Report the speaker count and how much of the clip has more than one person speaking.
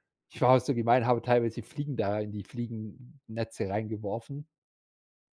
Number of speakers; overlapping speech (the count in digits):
1, no overlap